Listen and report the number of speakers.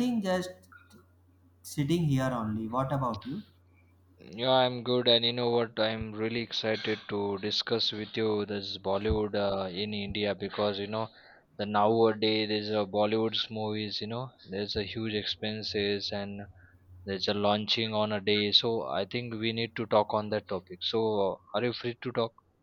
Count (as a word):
two